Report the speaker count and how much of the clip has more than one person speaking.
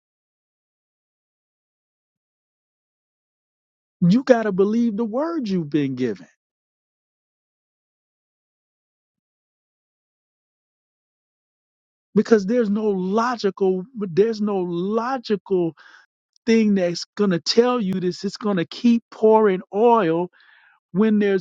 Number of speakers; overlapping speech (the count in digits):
1, no overlap